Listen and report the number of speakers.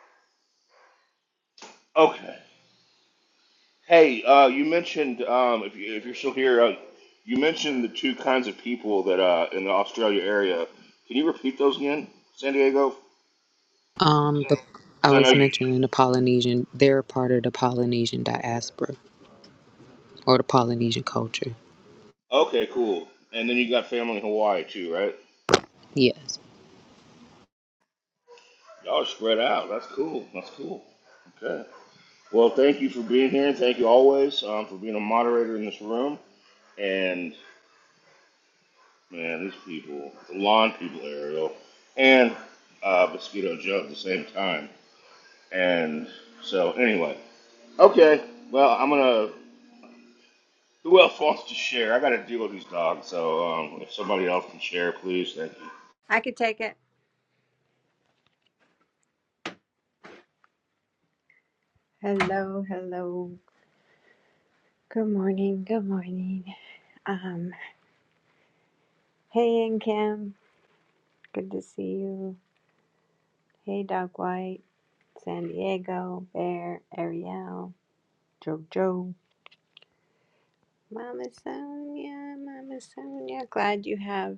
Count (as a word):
three